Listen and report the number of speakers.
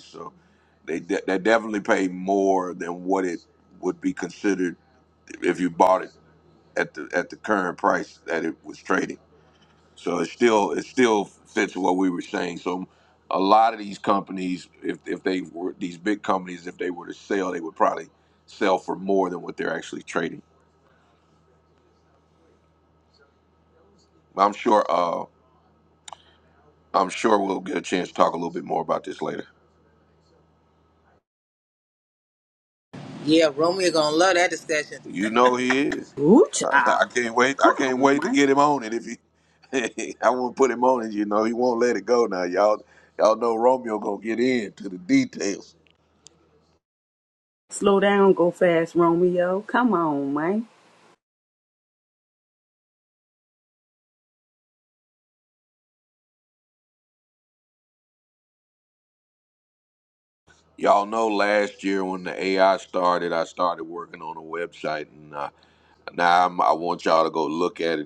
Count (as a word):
three